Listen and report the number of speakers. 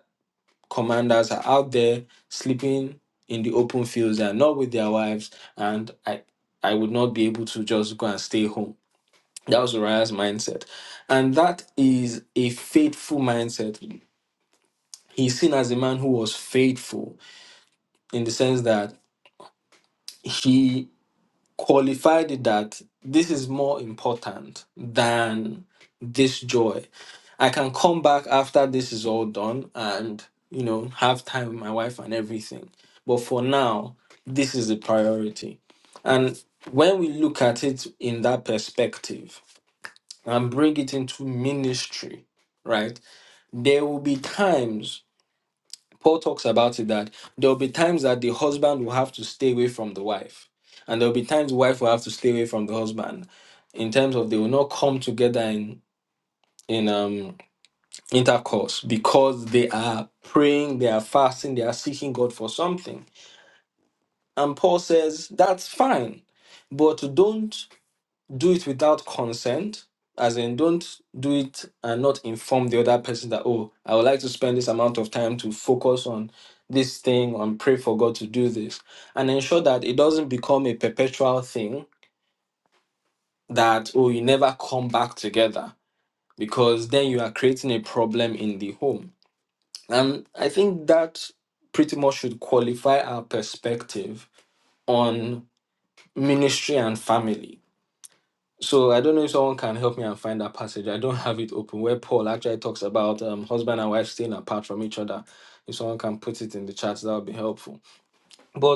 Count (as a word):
one